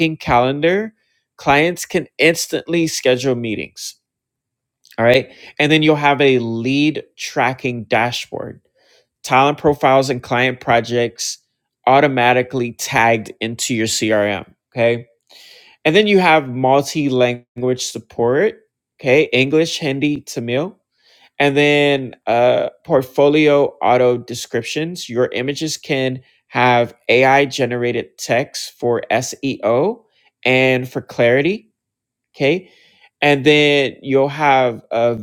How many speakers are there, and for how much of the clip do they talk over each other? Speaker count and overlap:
one, no overlap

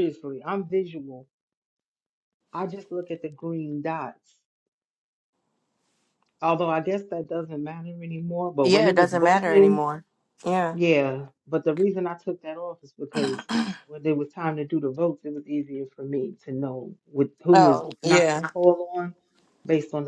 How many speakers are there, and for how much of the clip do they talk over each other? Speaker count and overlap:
two, about 11%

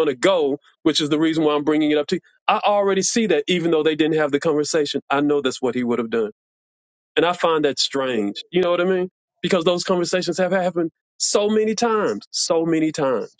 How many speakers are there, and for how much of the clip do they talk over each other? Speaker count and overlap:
one, no overlap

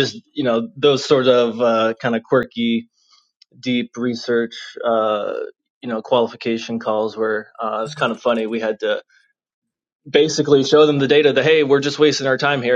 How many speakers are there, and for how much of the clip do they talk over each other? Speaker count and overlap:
one, no overlap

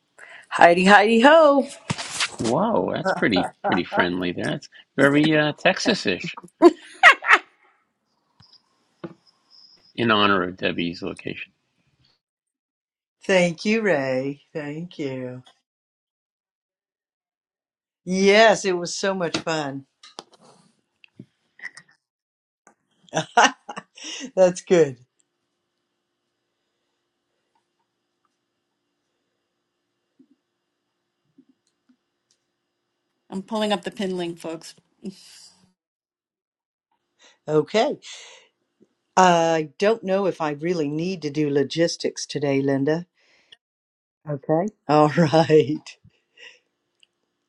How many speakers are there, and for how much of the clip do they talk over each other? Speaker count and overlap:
four, no overlap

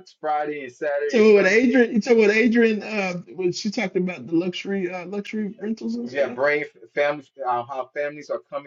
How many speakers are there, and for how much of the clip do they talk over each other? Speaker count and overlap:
two, about 15%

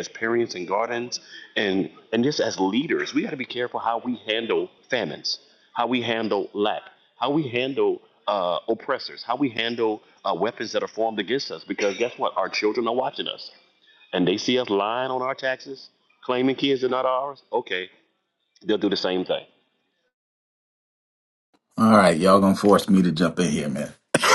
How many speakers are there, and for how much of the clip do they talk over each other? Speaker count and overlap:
two, no overlap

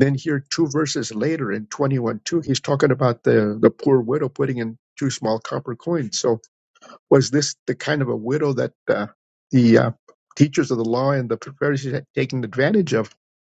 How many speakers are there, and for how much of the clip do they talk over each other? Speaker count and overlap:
one, no overlap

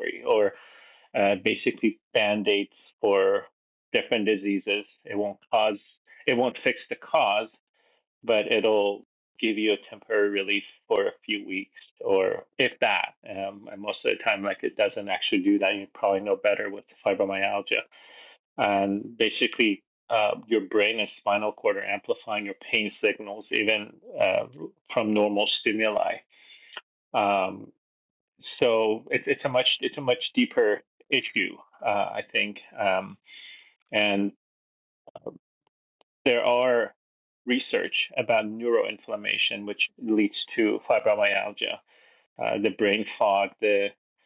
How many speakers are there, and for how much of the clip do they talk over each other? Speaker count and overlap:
one, no overlap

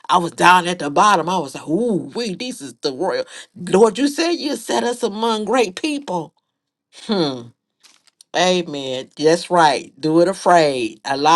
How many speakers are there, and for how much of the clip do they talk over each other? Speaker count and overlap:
one, no overlap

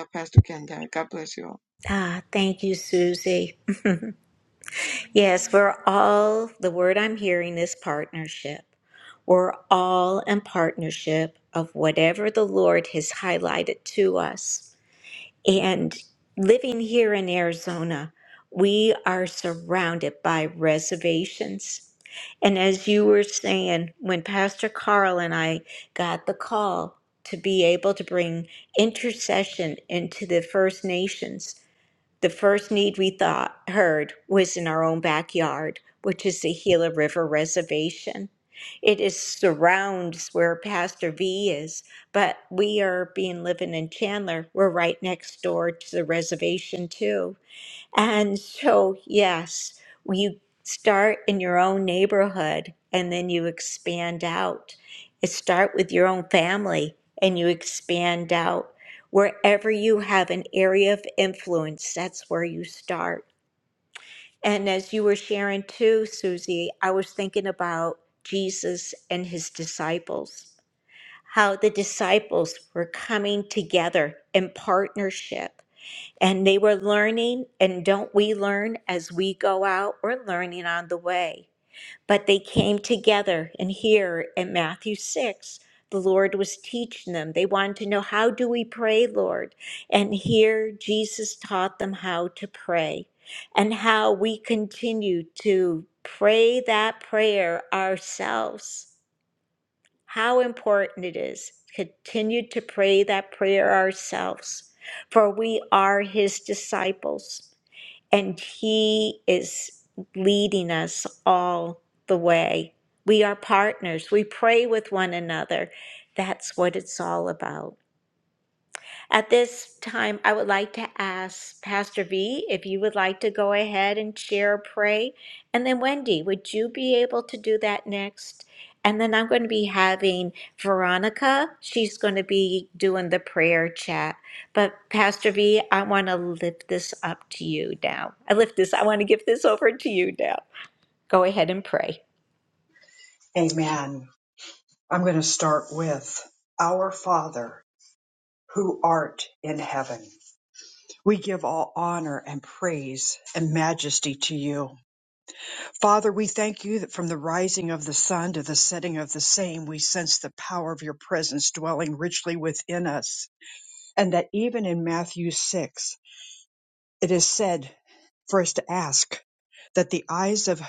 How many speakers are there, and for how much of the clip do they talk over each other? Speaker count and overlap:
three, no overlap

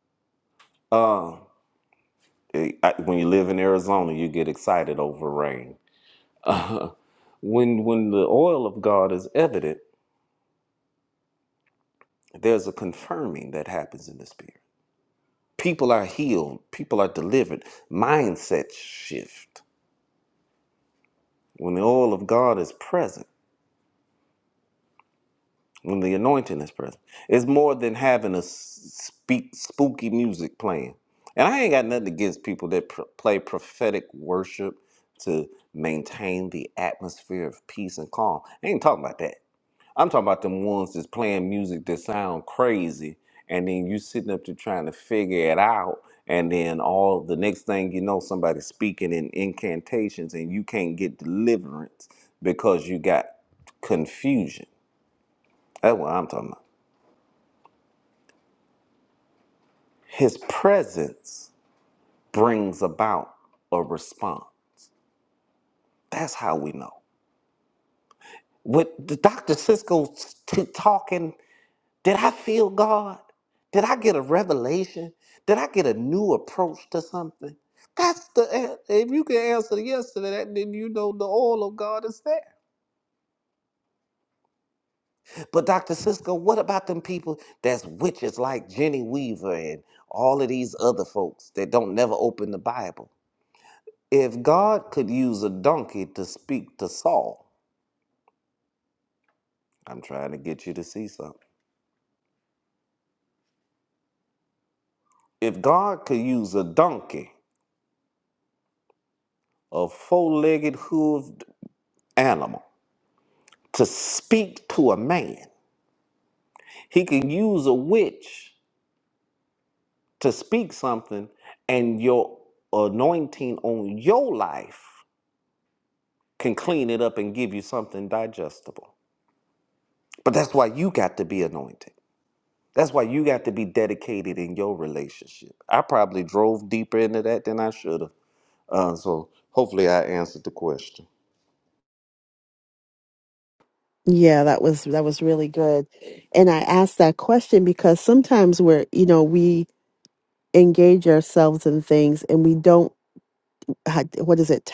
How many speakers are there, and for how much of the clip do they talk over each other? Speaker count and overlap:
two, no overlap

